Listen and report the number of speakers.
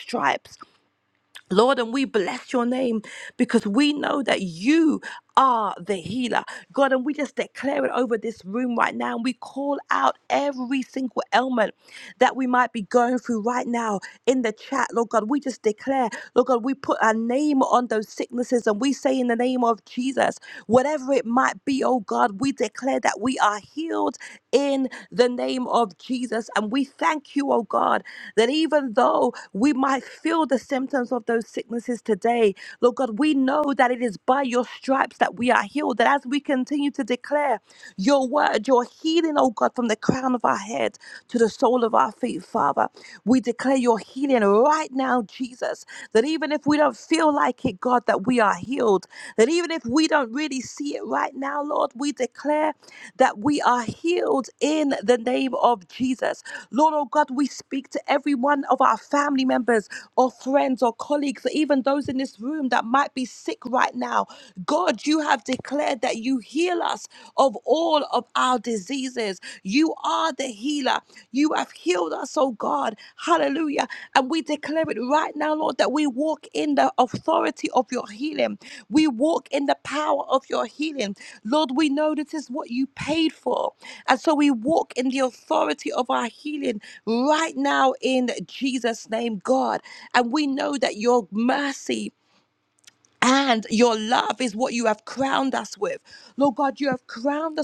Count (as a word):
one